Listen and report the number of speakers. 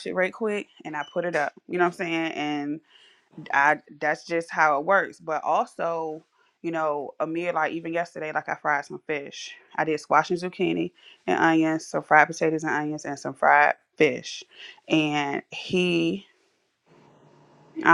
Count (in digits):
1